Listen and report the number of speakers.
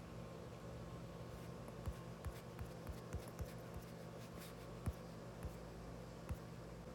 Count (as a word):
zero